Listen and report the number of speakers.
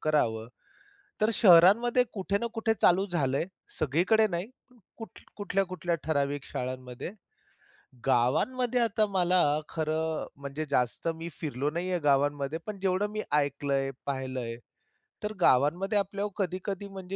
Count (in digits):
1